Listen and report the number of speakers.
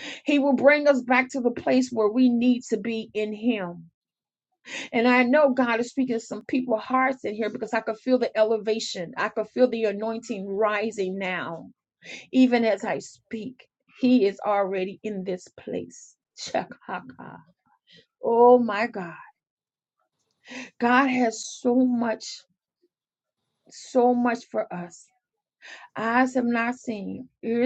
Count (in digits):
1